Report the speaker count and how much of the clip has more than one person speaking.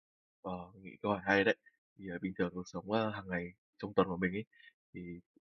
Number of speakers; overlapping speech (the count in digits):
1, no overlap